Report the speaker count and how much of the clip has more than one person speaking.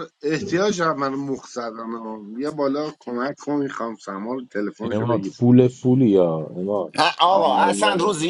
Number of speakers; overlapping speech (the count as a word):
three, about 16%